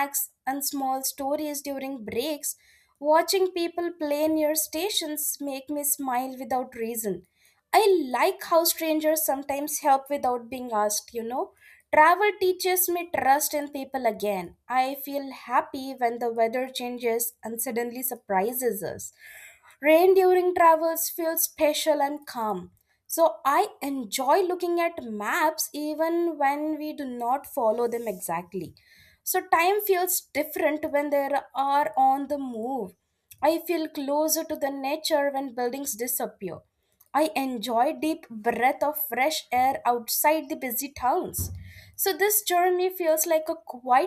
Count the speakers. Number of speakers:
1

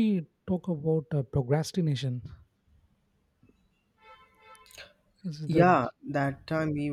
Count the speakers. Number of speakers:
2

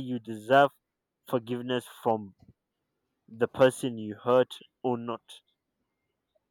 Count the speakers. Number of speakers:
1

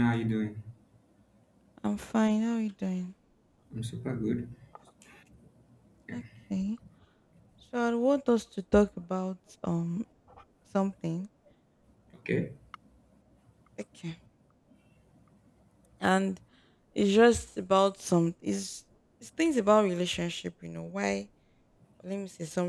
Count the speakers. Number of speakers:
2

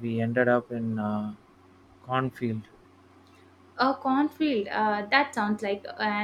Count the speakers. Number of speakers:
2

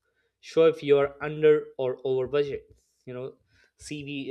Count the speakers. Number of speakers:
1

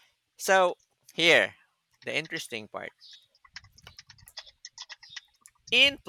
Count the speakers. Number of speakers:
1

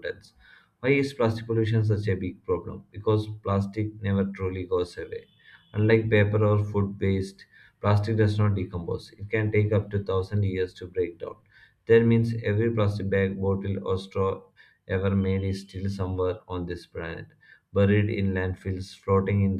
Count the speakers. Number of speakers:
1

